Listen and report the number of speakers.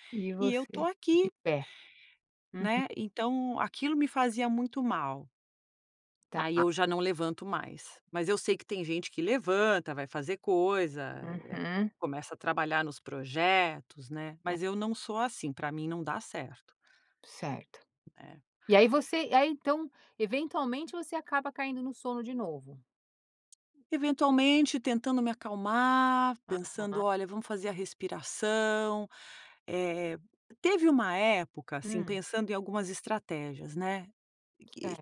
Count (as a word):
two